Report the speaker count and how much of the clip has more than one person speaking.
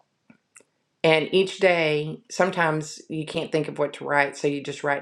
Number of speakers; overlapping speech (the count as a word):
one, no overlap